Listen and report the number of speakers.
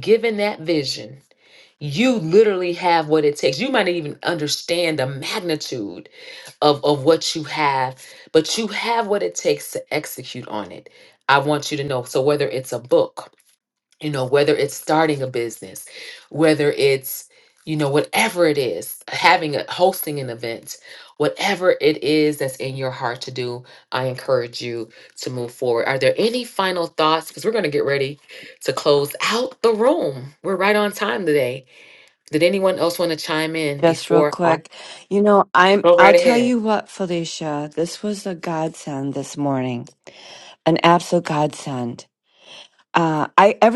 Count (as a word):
two